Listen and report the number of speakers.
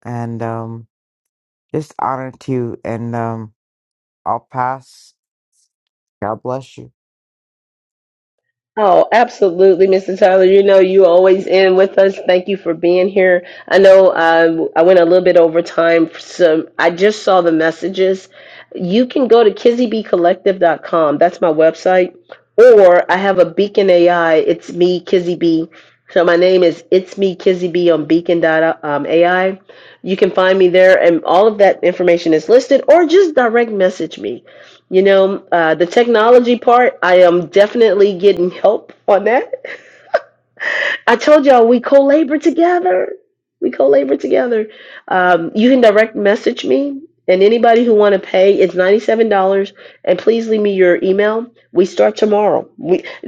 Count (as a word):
two